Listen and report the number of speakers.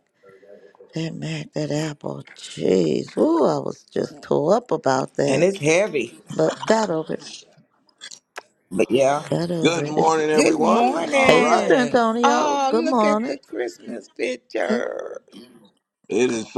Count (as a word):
three